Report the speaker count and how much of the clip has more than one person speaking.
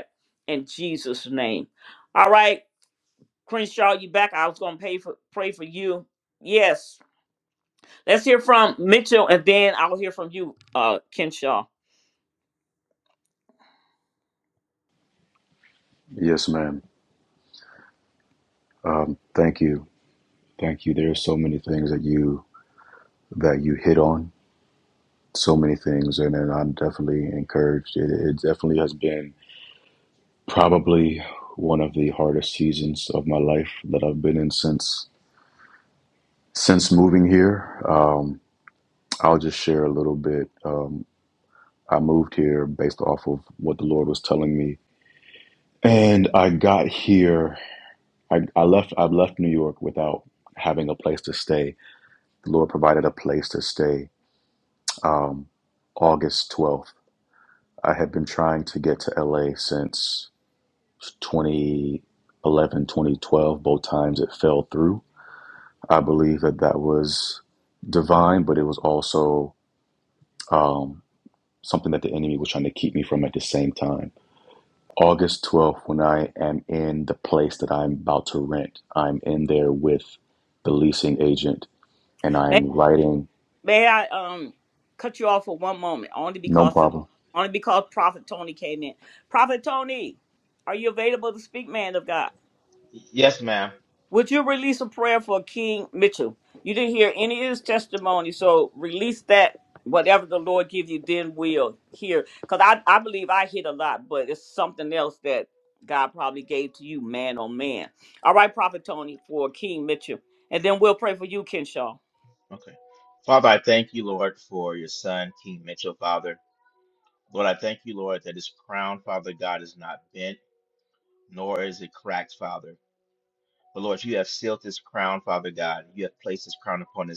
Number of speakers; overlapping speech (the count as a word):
three, under 1%